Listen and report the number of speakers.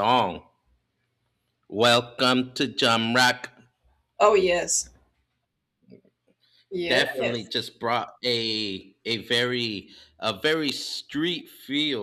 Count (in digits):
2